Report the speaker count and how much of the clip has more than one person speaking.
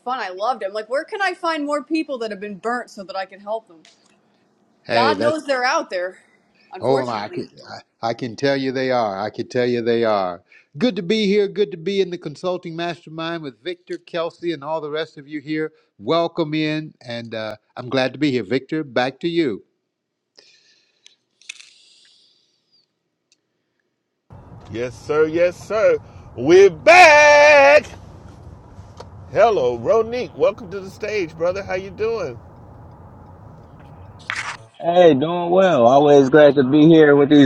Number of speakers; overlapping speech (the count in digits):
4, about 3%